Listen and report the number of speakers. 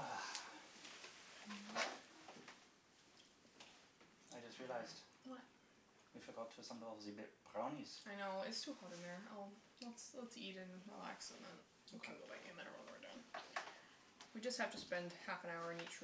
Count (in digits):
2